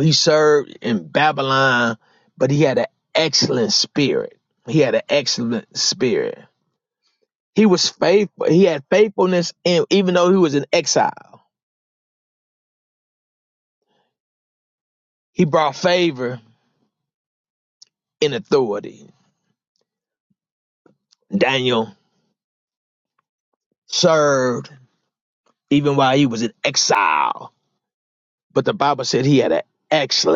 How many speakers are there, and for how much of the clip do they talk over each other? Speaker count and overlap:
1, no overlap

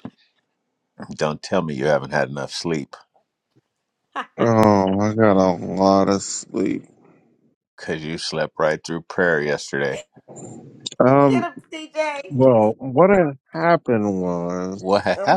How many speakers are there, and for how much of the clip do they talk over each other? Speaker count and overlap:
3, about 3%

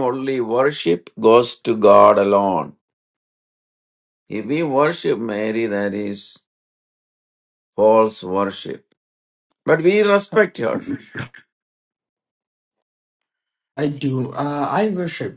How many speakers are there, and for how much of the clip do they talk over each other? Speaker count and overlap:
2, no overlap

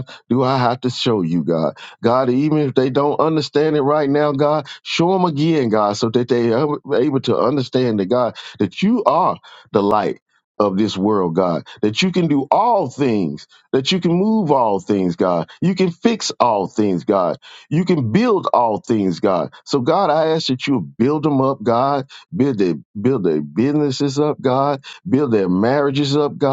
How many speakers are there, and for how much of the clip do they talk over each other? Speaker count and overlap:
1, no overlap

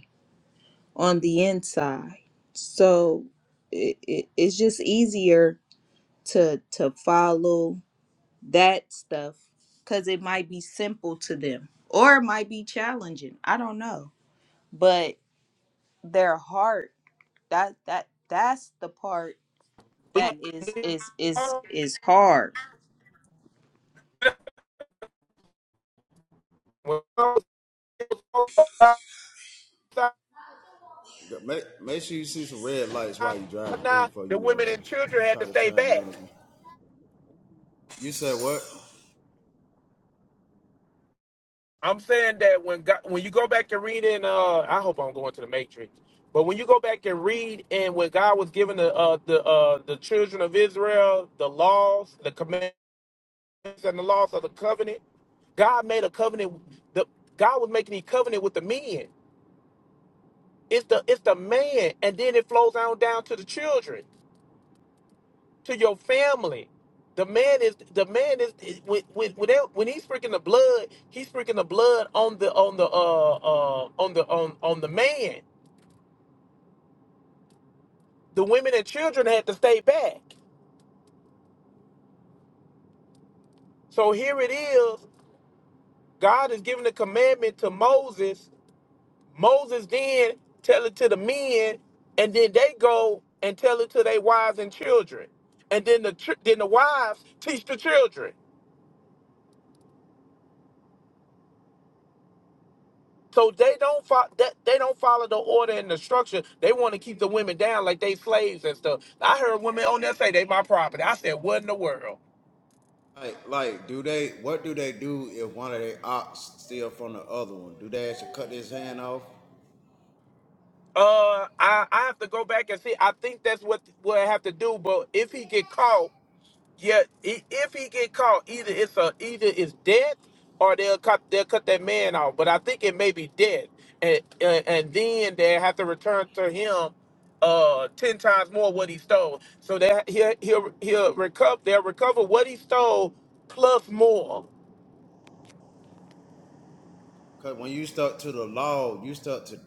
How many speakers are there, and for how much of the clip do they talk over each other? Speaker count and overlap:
3, about 2%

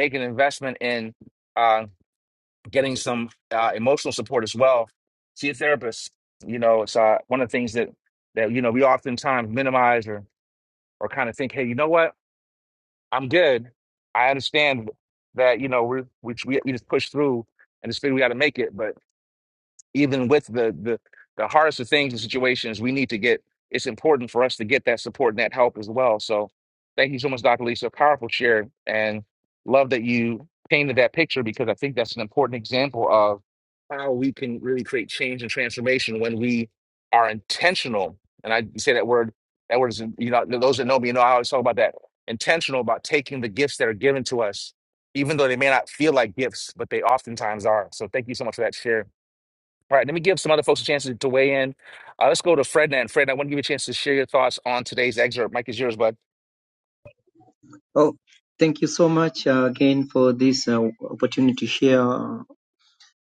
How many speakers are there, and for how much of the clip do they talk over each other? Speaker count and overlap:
2, no overlap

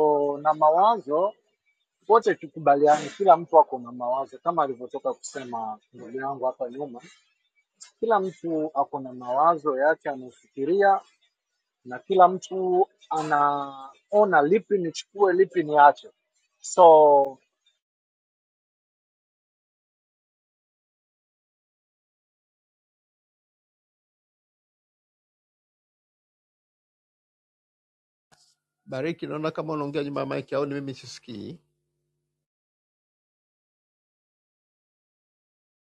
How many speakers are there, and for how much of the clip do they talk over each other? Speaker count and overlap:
2, no overlap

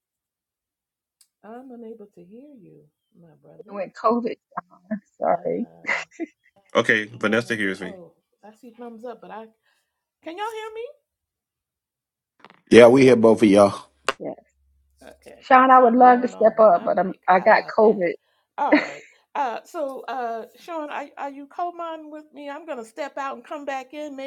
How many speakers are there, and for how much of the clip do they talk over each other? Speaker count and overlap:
4, about 9%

